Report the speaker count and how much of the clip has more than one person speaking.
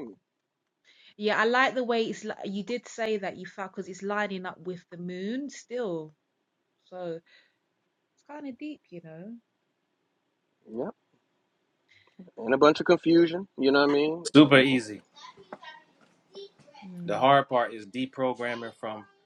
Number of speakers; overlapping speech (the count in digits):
3, about 1%